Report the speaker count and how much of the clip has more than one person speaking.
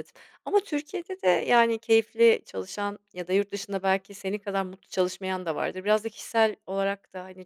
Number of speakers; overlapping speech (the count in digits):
1, no overlap